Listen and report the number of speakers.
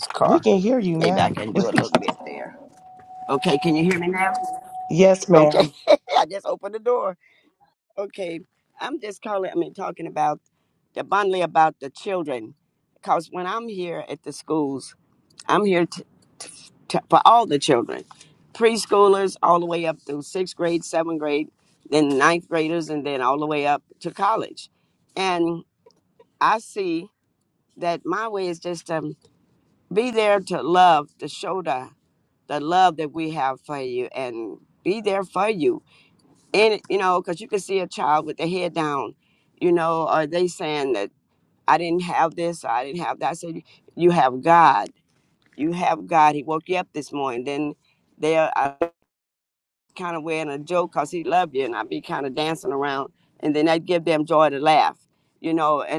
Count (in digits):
2